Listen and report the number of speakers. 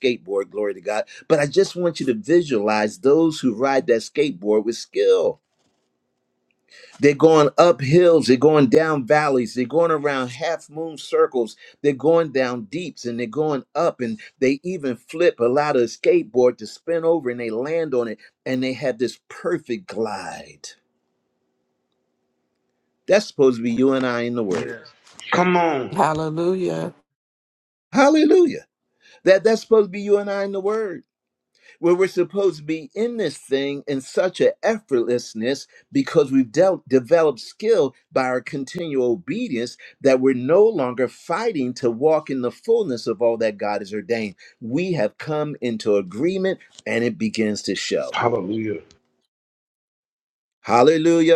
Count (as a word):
three